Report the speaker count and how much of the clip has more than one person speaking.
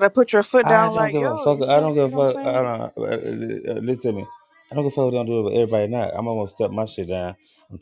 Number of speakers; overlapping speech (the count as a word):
two, about 26%